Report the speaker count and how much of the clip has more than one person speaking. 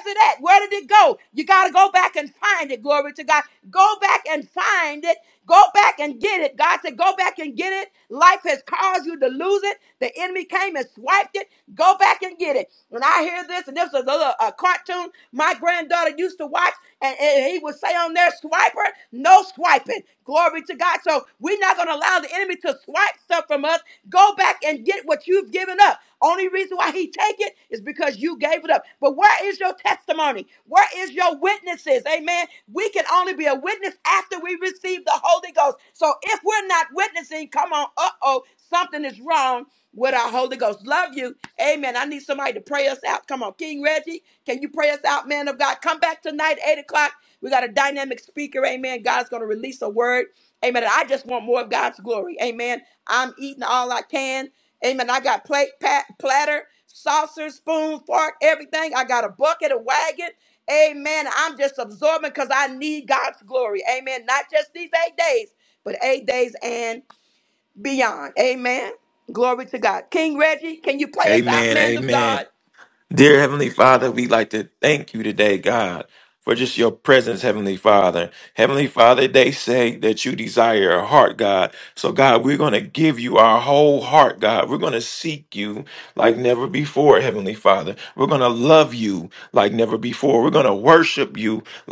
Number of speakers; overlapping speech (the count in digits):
2, about 1%